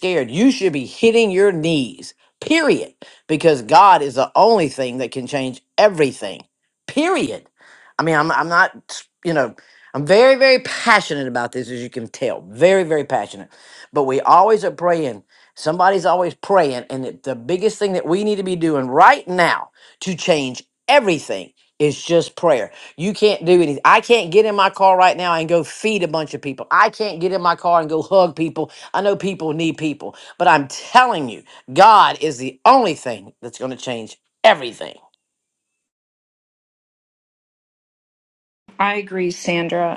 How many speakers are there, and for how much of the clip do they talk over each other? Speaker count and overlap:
2, no overlap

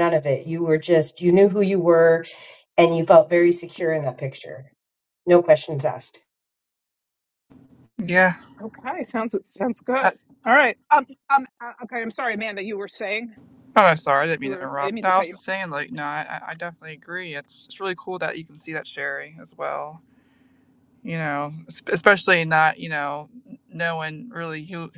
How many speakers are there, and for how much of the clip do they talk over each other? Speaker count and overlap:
3, about 4%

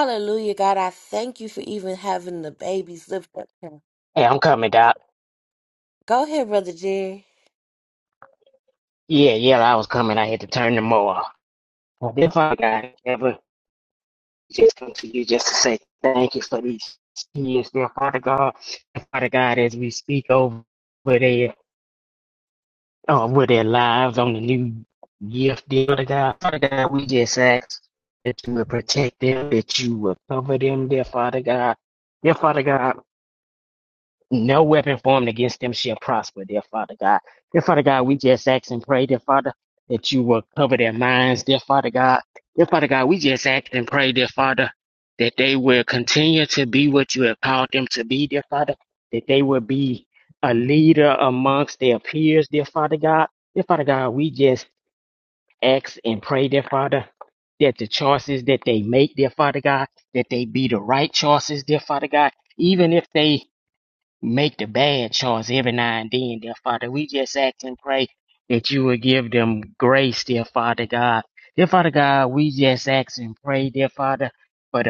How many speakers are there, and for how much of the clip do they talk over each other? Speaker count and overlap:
2, no overlap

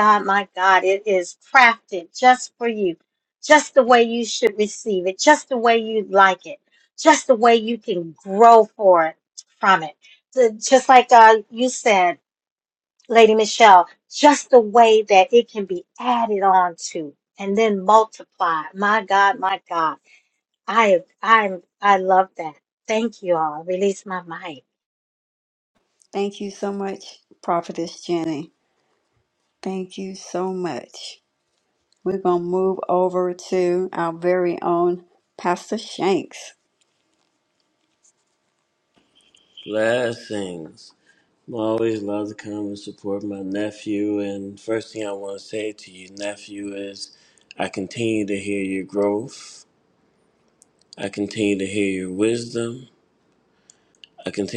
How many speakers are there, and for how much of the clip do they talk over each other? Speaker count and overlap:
3, no overlap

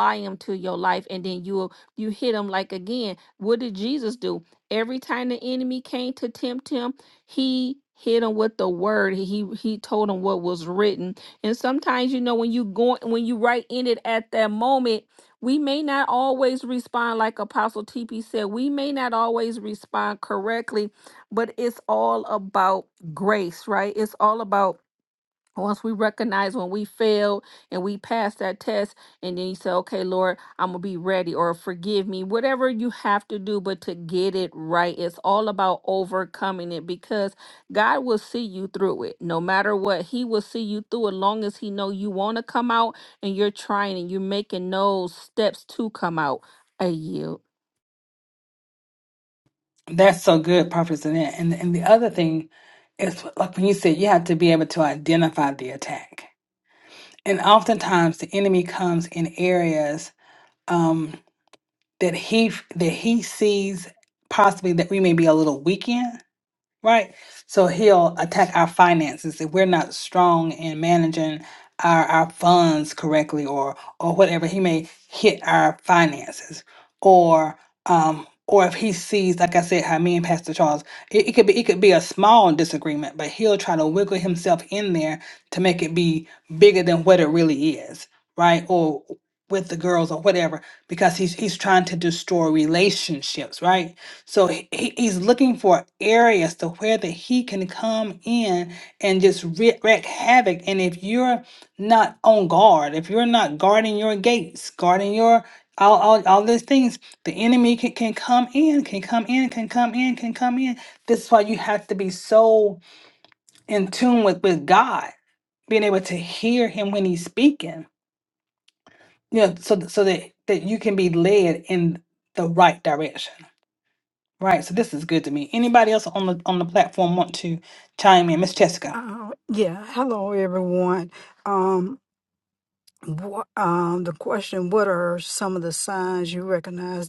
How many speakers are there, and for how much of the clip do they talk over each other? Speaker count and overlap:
3, under 1%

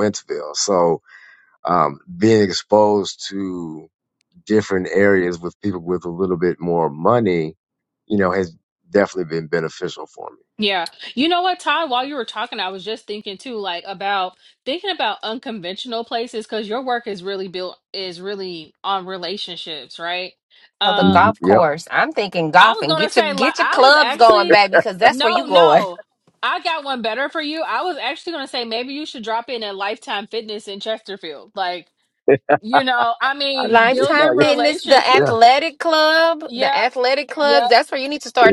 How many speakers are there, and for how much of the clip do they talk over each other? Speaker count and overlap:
3, about 16%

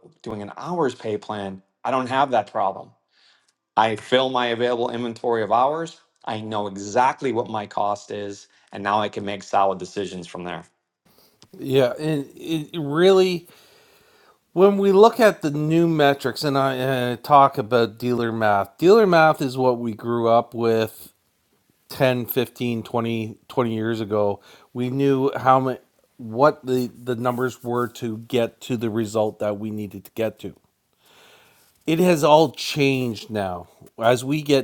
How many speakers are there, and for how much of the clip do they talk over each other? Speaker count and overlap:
2, no overlap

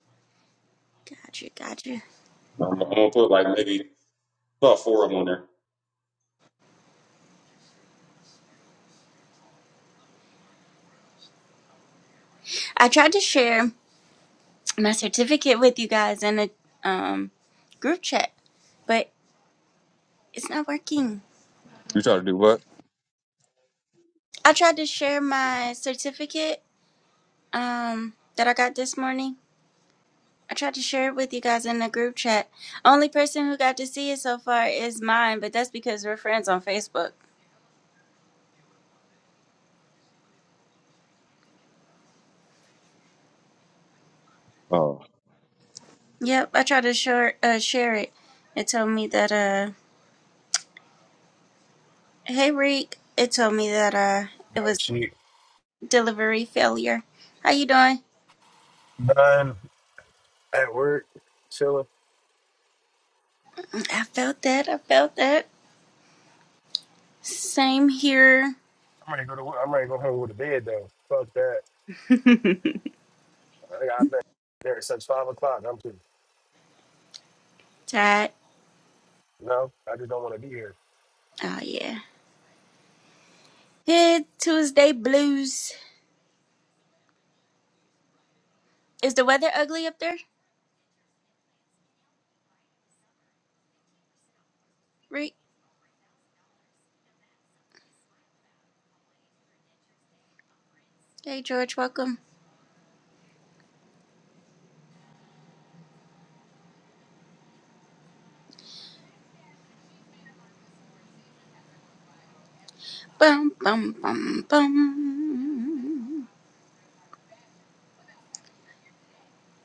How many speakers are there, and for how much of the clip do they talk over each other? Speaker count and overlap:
3, under 1%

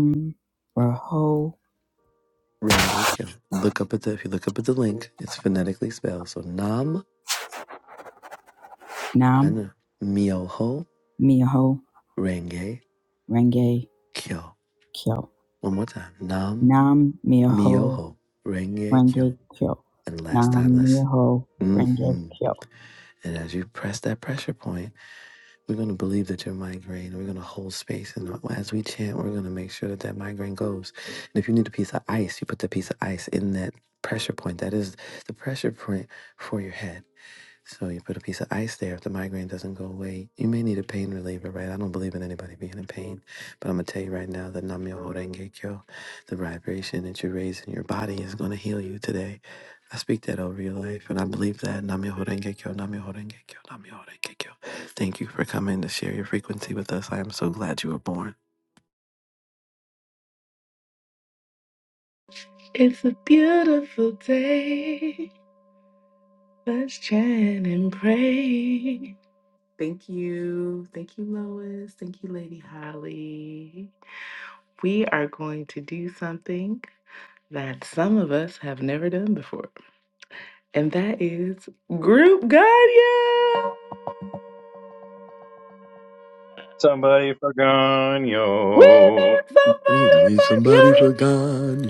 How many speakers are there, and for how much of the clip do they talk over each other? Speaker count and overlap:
4, about 4%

